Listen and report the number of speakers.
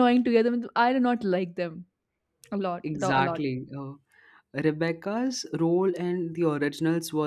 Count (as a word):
two